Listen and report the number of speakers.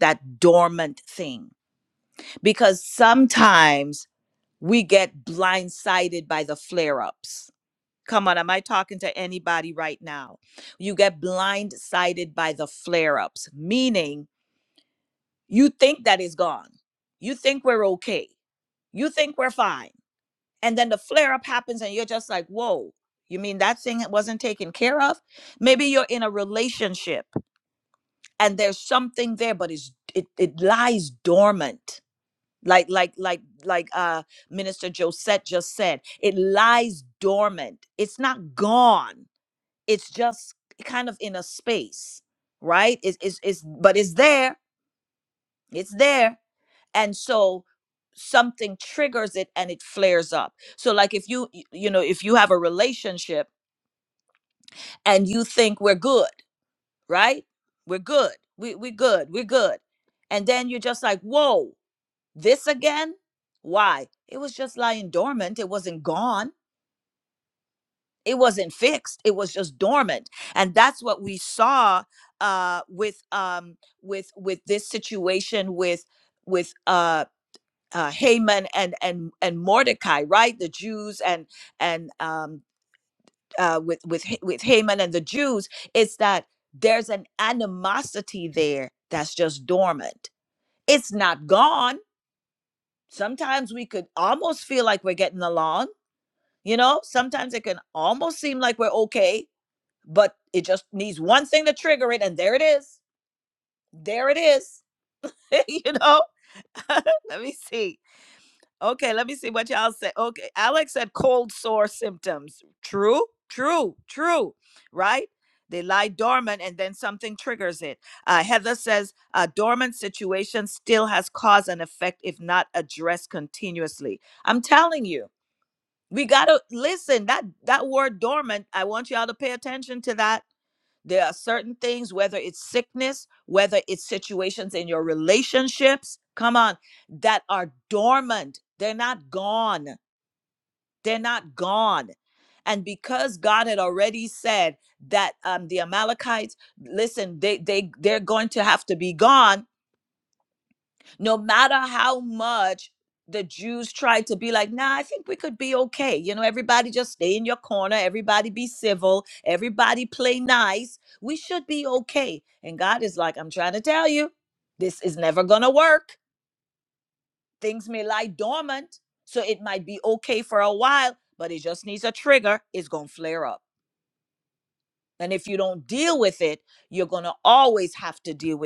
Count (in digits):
1